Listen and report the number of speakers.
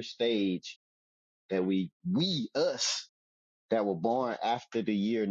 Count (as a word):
one